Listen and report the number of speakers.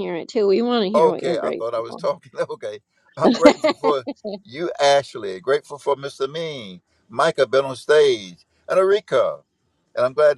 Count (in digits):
2